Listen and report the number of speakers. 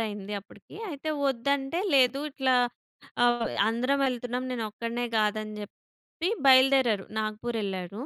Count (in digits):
1